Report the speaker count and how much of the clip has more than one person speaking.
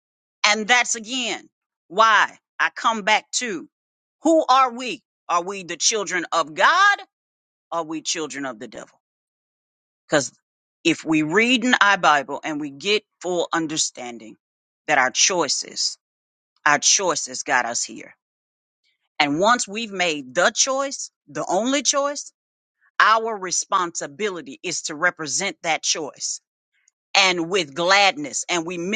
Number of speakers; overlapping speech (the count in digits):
1, no overlap